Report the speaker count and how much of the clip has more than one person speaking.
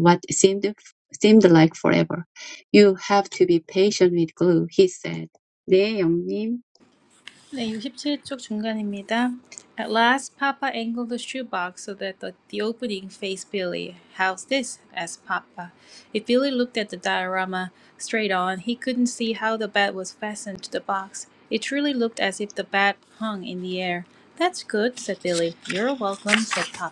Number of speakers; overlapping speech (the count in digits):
2, no overlap